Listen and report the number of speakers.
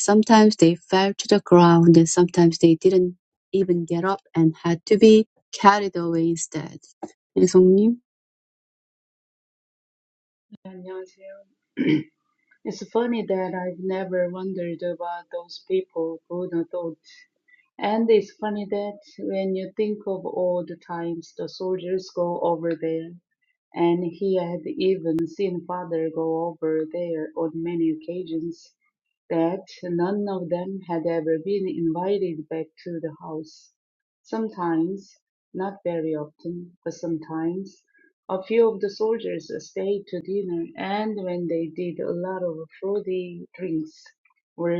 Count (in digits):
2